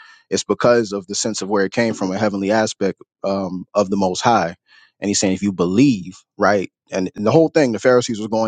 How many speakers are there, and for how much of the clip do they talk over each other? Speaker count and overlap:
1, no overlap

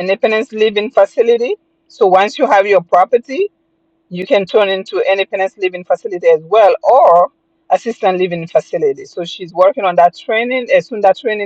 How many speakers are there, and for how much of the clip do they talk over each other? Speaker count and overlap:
1, no overlap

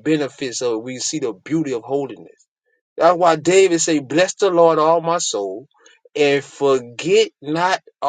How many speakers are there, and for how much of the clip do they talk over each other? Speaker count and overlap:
1, no overlap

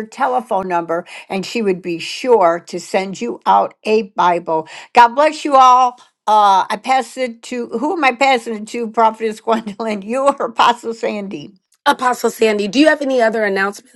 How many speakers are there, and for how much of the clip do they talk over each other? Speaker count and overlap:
2, no overlap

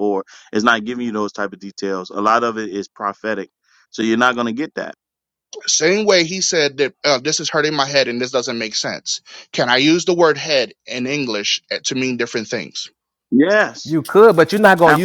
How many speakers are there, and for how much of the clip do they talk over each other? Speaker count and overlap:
3, about 1%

